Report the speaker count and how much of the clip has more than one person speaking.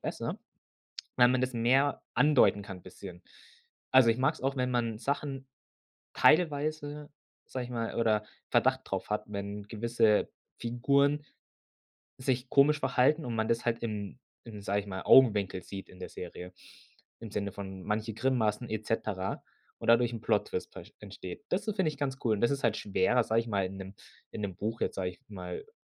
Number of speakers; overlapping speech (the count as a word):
one, no overlap